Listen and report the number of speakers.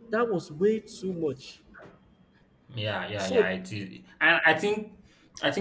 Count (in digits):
2